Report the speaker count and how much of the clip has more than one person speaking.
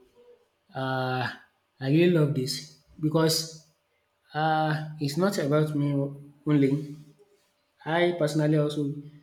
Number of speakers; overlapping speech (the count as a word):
one, no overlap